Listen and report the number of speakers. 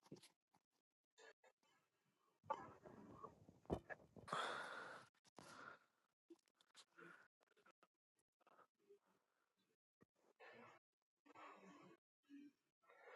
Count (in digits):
0